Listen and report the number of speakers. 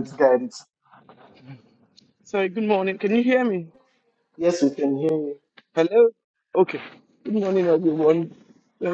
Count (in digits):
2